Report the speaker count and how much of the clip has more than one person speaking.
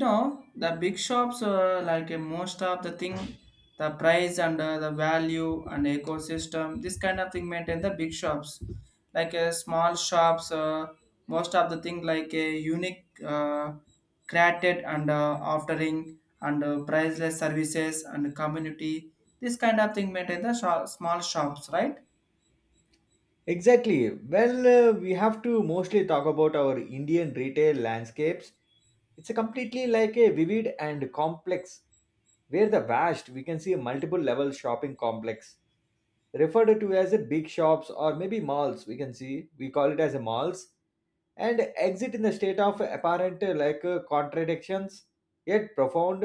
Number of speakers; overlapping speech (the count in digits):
2, no overlap